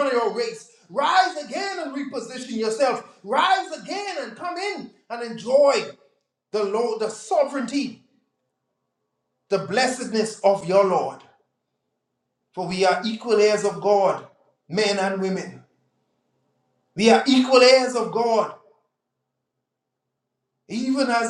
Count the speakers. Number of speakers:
one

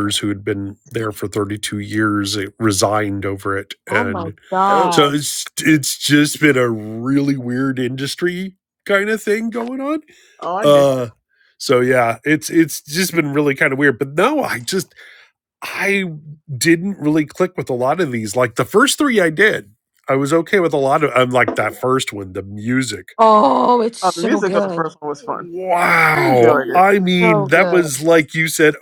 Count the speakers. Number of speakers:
three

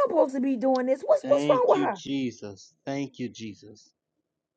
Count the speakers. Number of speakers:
two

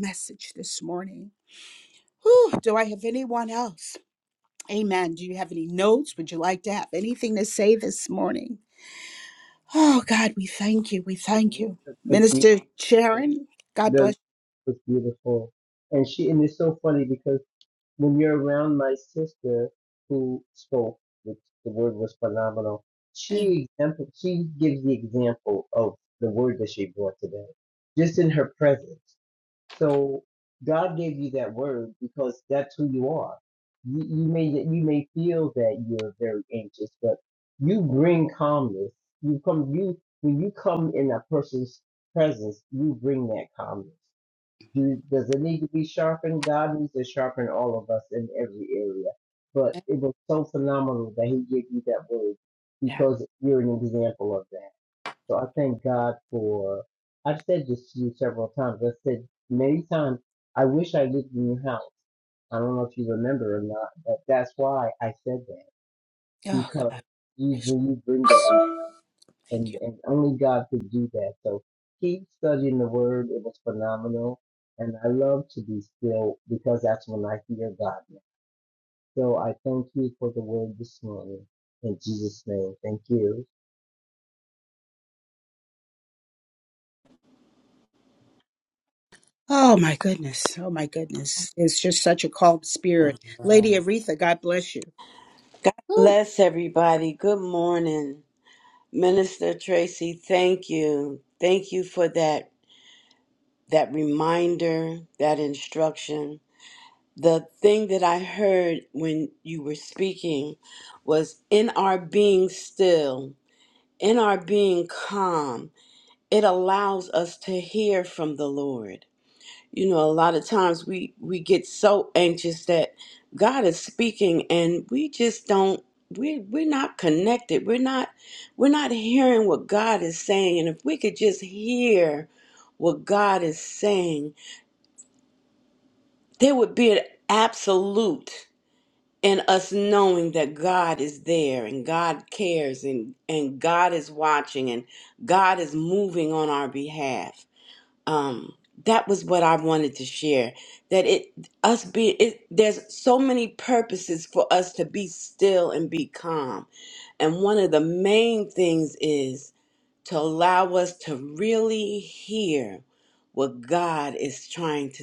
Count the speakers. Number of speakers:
three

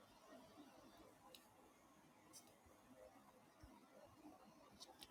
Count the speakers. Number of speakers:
zero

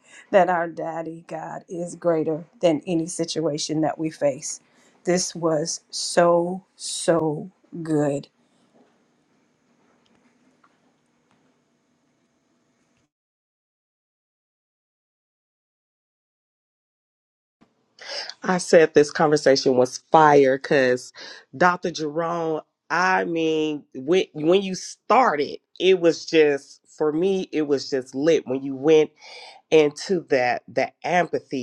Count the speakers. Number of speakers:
two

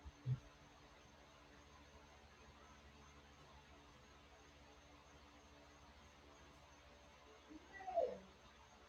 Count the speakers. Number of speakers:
zero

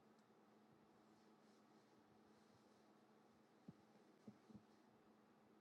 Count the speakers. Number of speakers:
zero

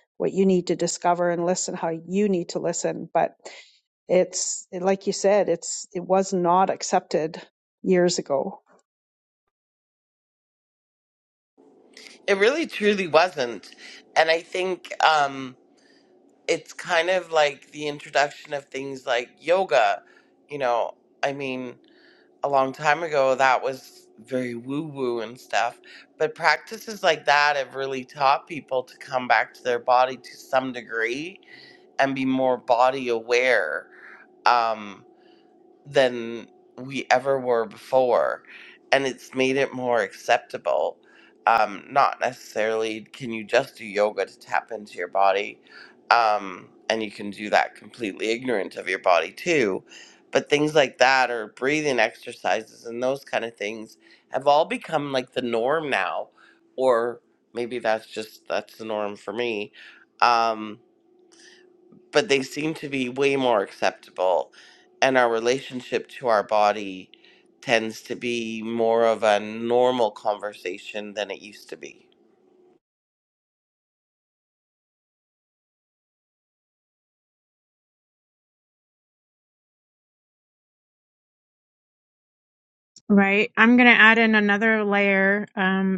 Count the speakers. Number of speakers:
three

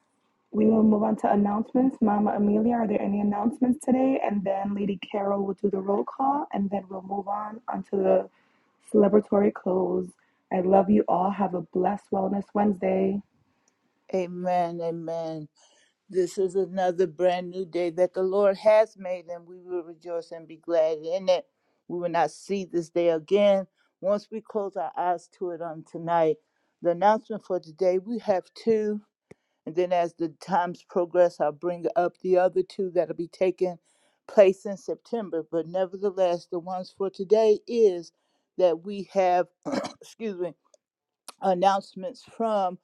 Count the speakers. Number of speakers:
two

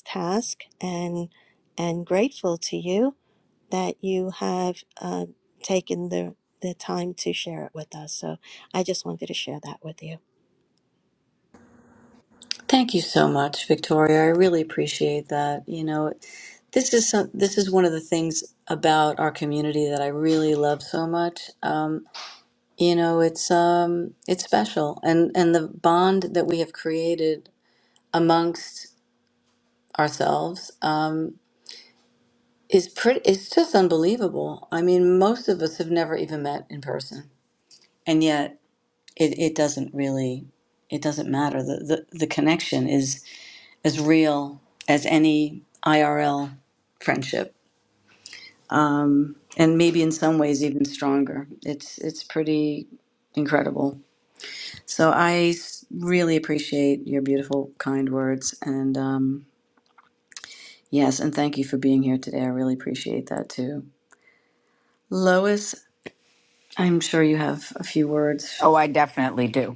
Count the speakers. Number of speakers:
three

